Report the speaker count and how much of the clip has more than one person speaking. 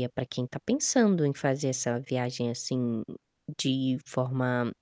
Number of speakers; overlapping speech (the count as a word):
one, no overlap